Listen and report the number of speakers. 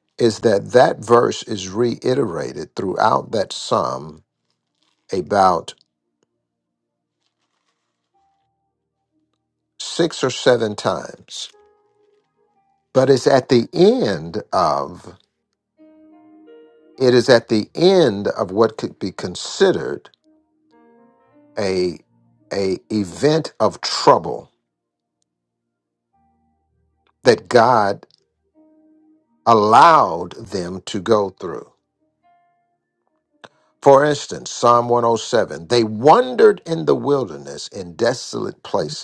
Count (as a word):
one